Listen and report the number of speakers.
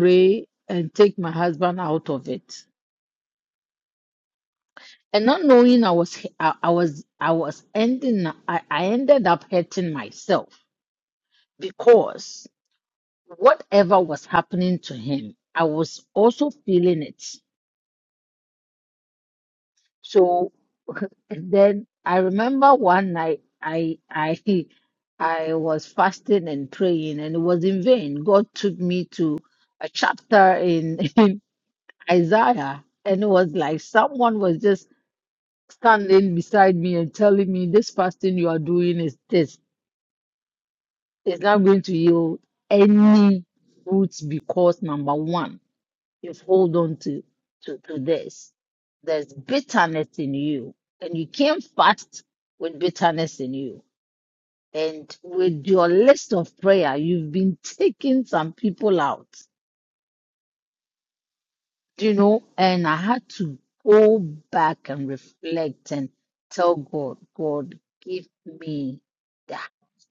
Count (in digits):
1